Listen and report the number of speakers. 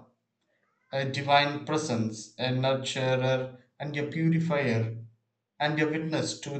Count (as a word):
one